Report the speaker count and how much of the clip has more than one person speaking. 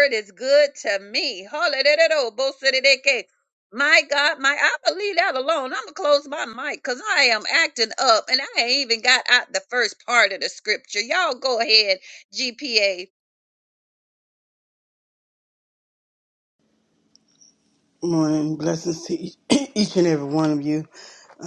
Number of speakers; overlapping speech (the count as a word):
two, no overlap